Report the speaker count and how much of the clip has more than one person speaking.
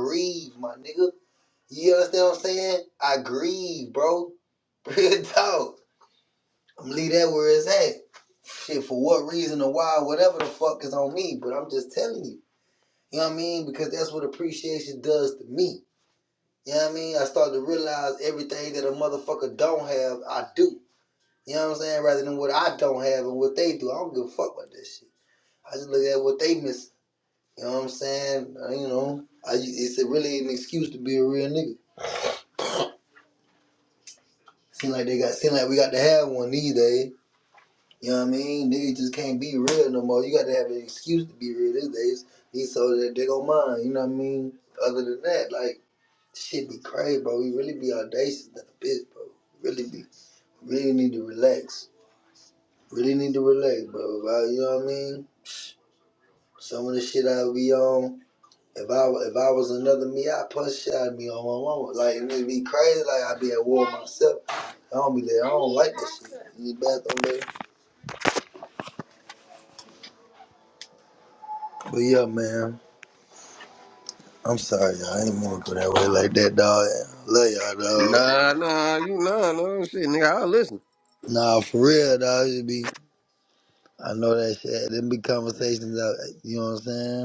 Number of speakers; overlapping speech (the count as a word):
two, under 1%